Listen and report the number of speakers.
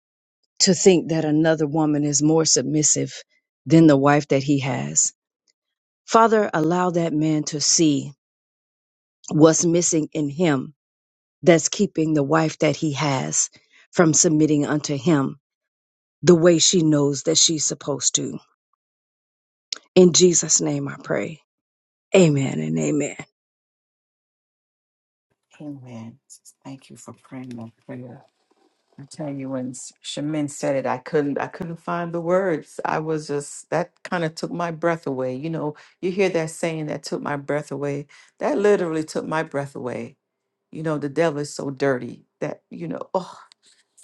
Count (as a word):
two